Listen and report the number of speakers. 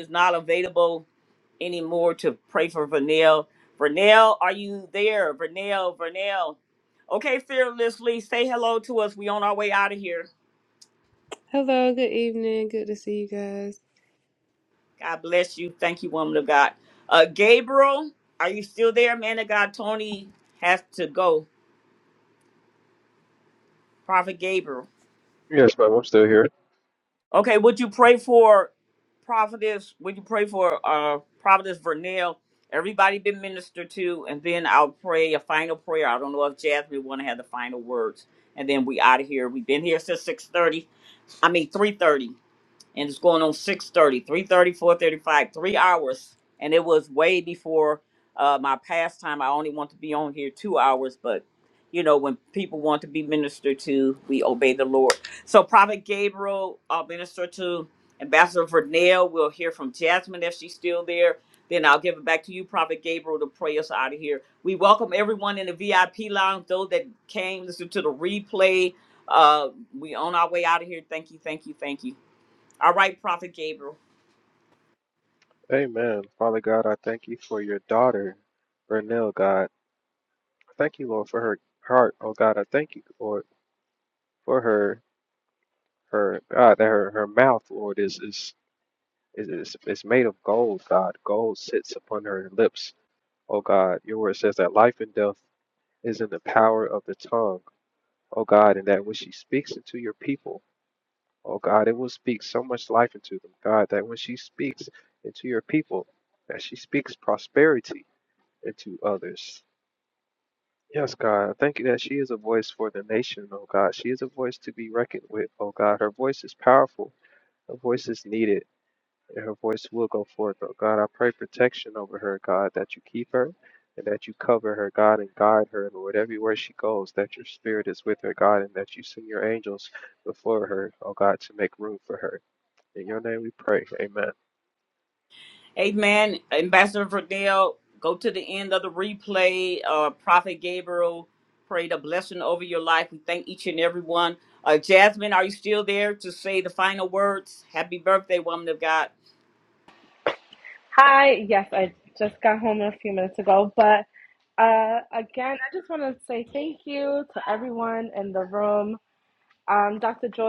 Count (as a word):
four